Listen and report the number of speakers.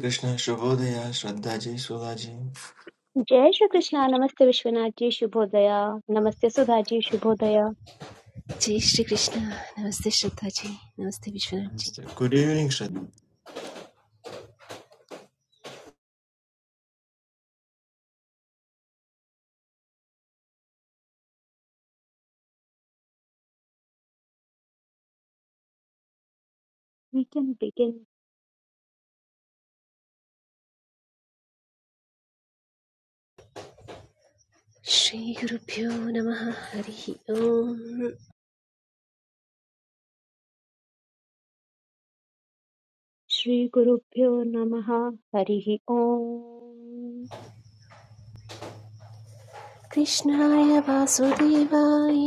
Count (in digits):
3